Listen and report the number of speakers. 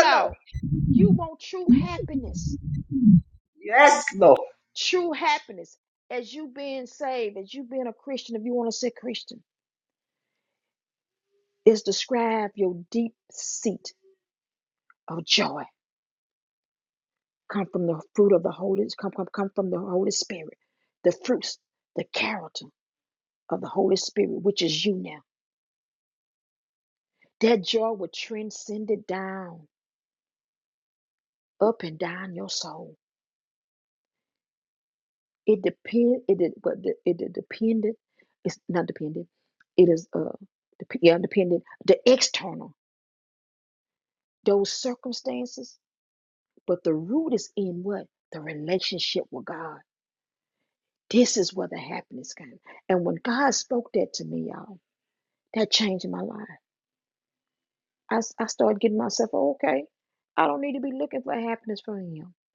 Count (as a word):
two